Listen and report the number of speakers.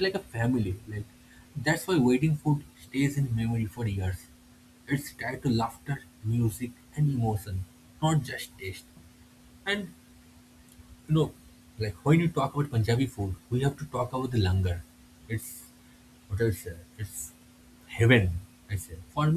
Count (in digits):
1